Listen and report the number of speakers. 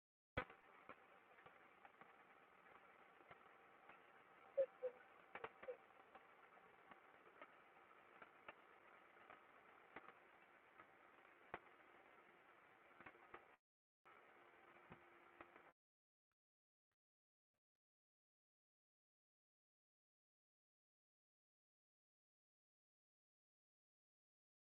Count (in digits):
0